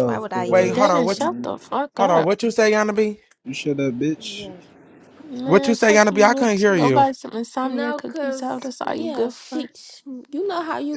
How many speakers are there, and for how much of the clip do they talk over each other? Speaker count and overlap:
4, about 49%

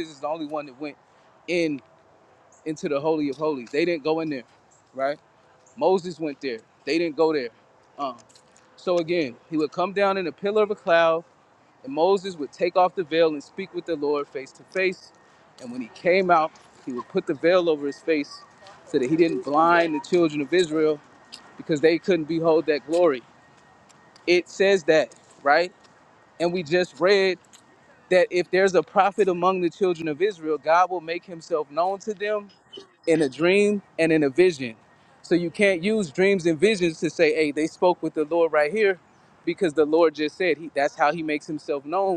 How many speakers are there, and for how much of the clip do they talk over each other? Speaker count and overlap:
1, no overlap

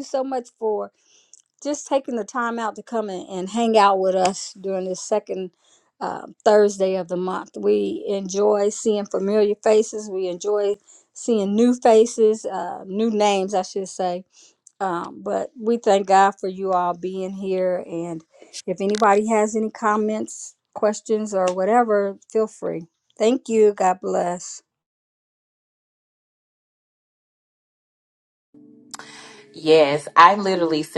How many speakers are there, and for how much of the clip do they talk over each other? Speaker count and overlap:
2, no overlap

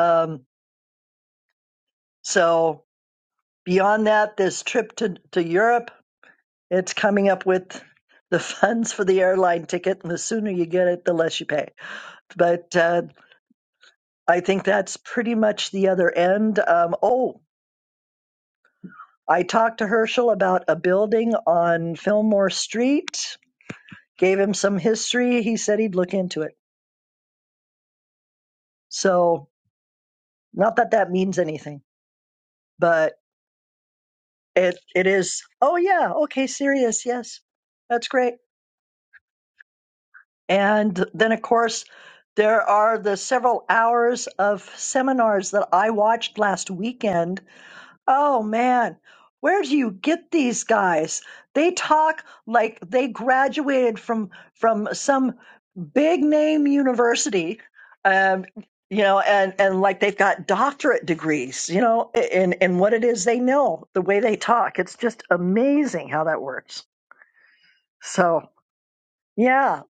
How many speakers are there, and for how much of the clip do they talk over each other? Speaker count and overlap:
1, no overlap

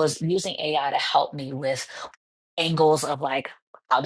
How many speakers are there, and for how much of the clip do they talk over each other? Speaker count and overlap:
1, no overlap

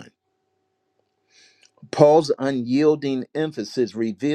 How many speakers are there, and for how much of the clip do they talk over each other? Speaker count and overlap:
1, no overlap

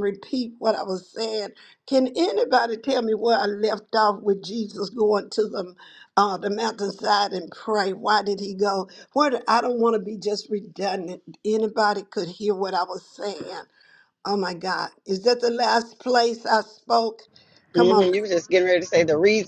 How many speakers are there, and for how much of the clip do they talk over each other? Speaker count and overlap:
2, about 2%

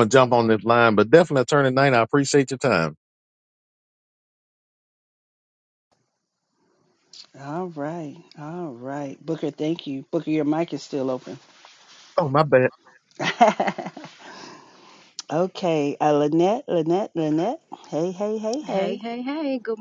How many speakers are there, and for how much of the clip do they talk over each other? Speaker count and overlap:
3, about 2%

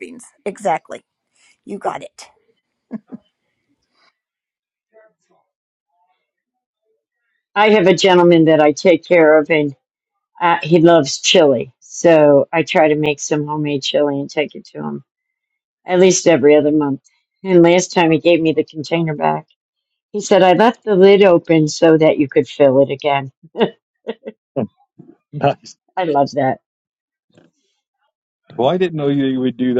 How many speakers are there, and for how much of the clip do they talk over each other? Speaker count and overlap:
3, no overlap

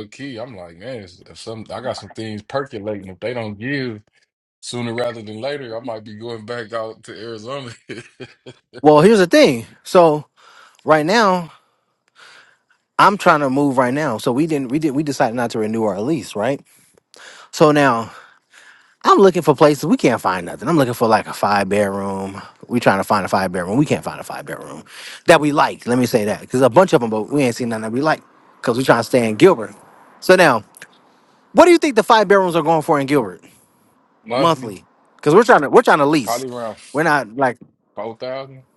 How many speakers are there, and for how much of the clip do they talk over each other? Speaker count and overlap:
2, about 1%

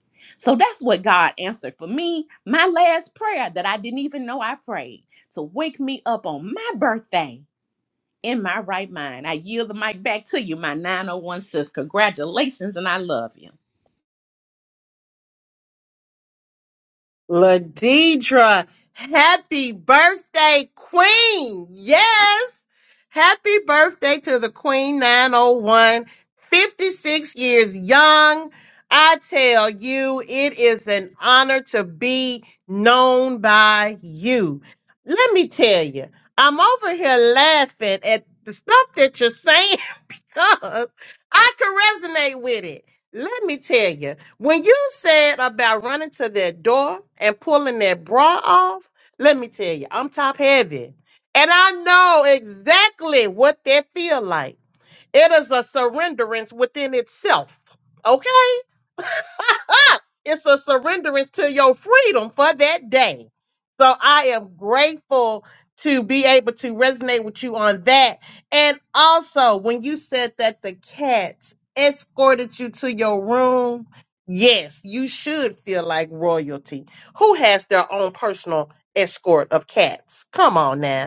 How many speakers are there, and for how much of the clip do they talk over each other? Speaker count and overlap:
2, no overlap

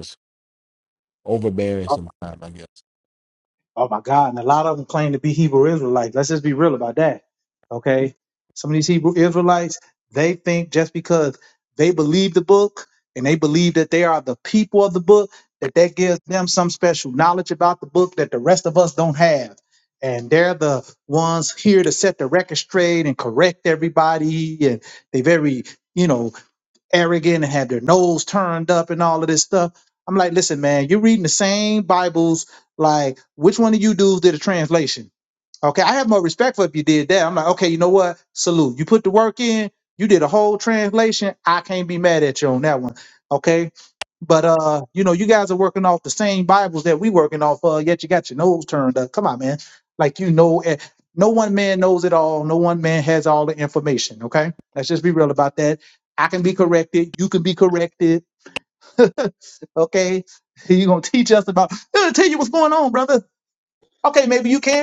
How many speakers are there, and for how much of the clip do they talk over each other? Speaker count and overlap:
2, no overlap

